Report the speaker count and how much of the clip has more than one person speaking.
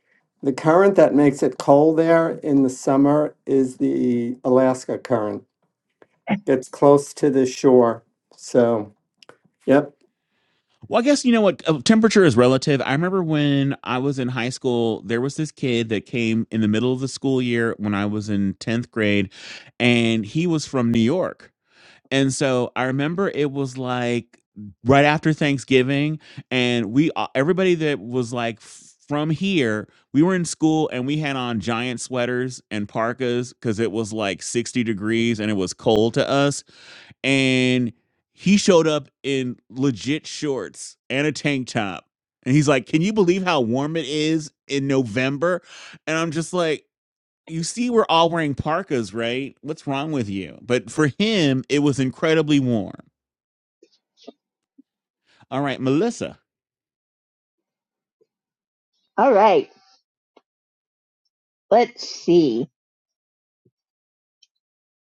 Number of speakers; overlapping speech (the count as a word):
three, no overlap